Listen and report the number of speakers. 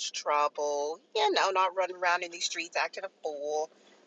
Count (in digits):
1